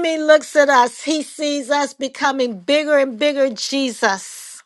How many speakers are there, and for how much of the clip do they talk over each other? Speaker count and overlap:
one, no overlap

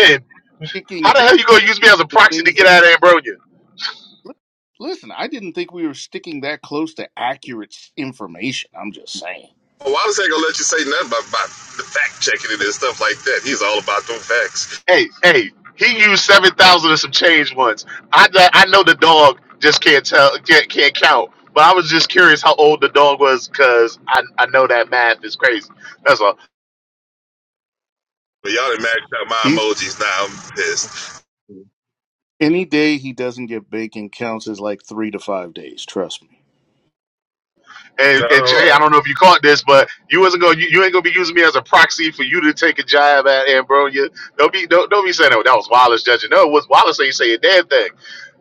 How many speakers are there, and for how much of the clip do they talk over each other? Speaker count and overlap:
three, about 3%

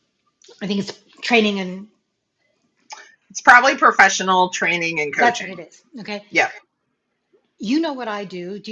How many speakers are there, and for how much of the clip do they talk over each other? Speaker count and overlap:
two, about 4%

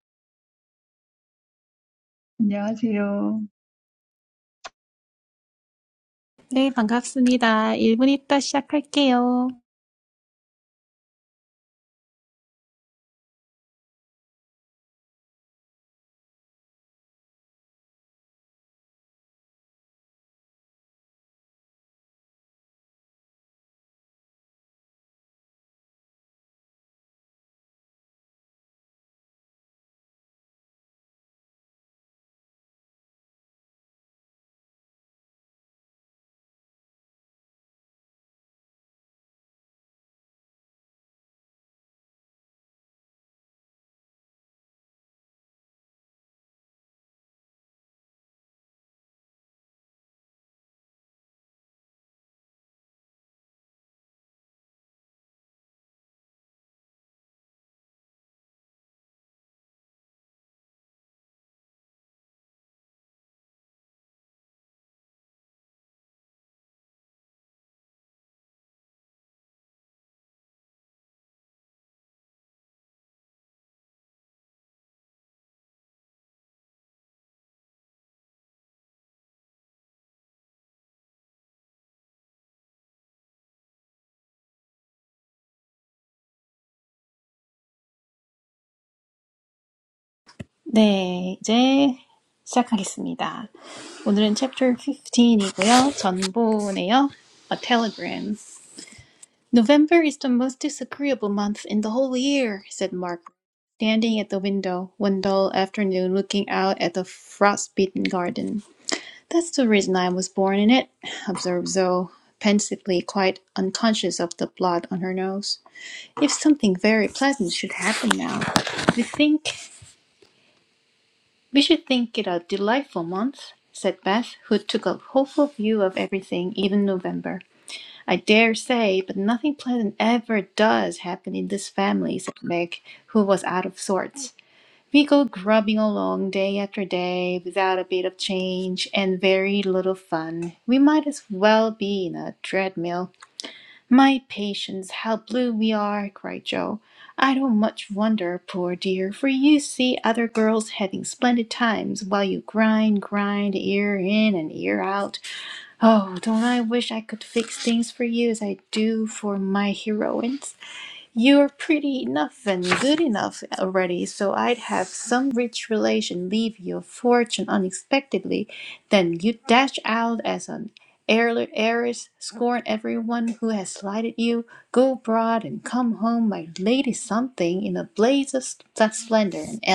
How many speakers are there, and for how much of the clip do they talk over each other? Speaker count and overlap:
two, no overlap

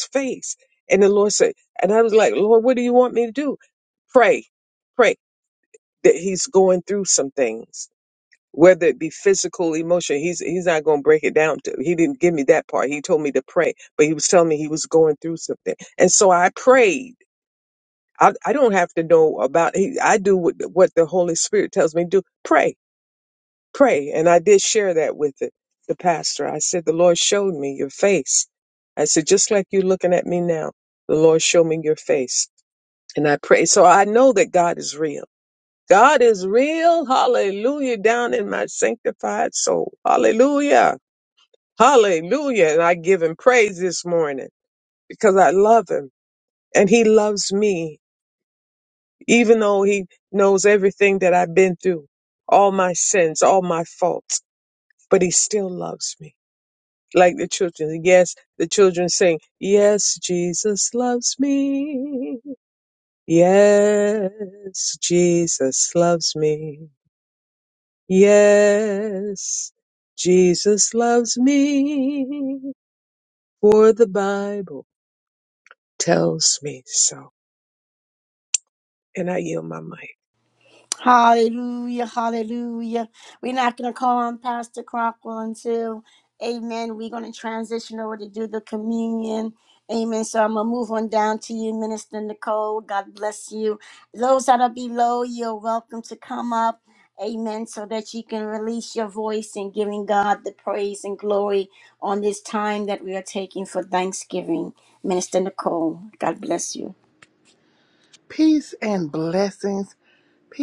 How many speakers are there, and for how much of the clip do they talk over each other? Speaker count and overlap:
three, no overlap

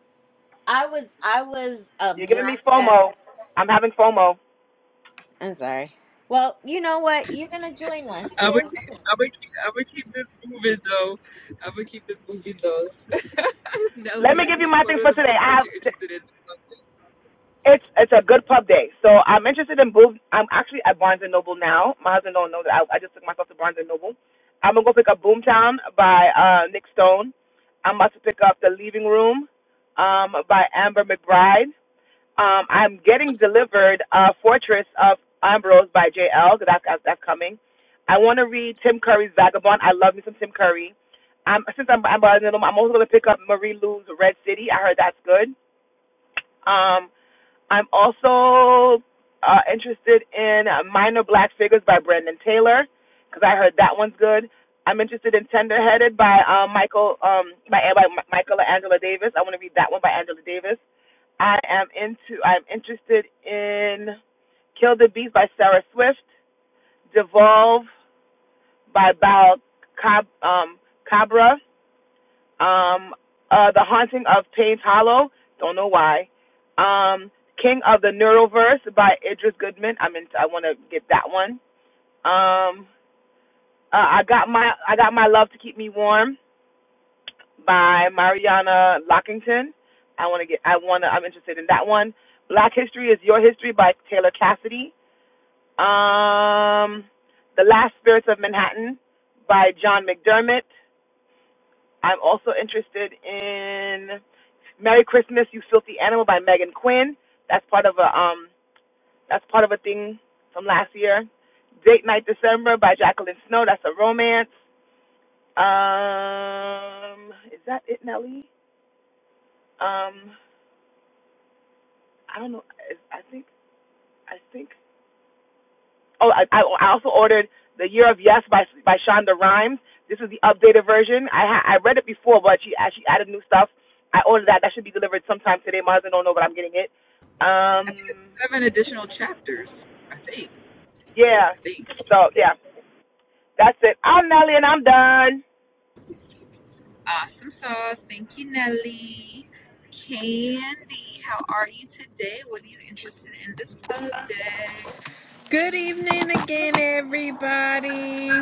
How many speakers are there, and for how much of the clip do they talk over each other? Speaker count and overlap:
four, about 1%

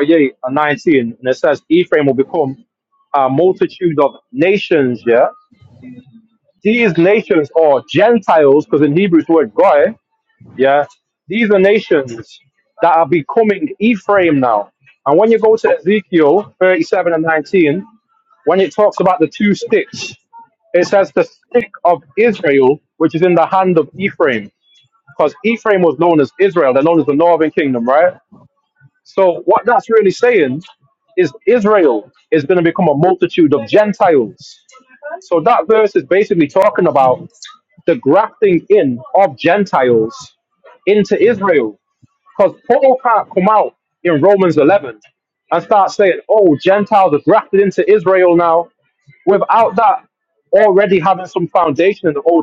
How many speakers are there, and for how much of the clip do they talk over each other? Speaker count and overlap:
one, no overlap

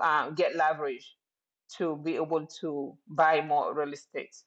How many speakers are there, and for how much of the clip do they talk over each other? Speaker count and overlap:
one, no overlap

